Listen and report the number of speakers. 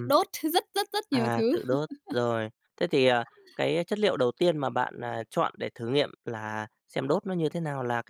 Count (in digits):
2